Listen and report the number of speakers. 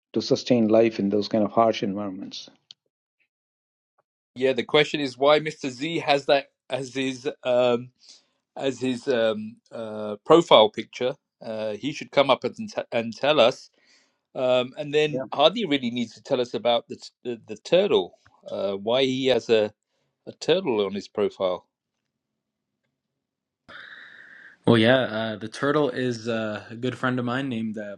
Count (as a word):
three